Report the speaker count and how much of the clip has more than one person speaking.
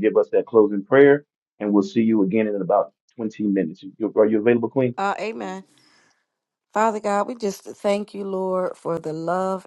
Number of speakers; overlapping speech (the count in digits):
2, no overlap